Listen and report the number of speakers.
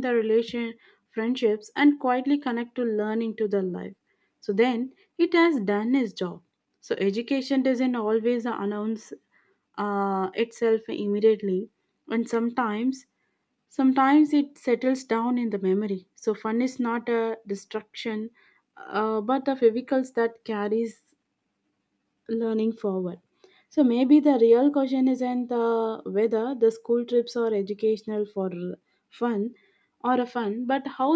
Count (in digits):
1